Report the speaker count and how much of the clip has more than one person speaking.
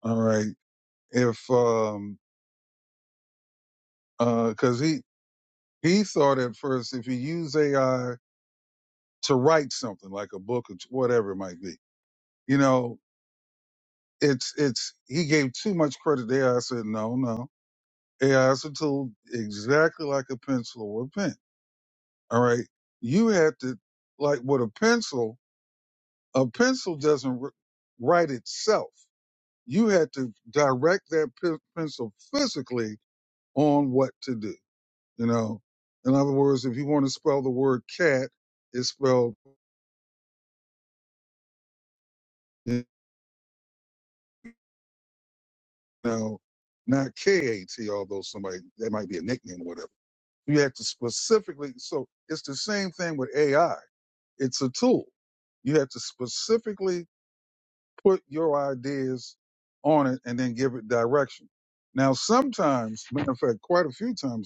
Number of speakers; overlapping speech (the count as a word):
one, no overlap